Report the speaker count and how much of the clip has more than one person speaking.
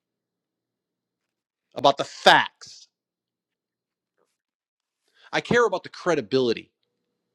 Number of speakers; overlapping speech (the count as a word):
one, no overlap